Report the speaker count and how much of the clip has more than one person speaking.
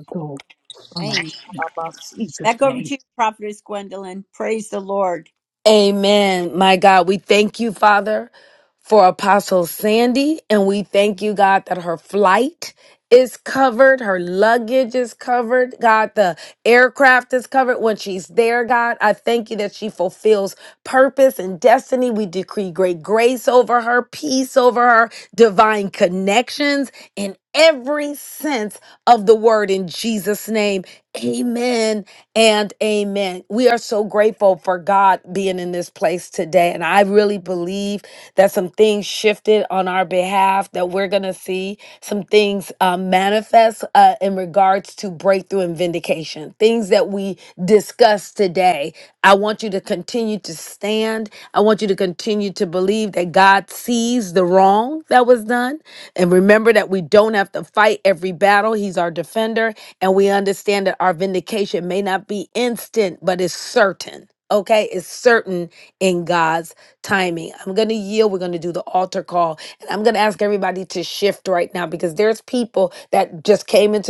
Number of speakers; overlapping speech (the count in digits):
3, about 1%